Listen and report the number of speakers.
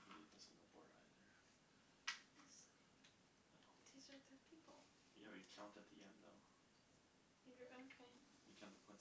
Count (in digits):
2